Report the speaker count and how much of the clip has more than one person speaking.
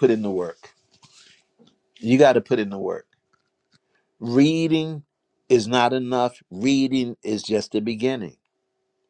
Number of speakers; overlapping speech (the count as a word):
one, no overlap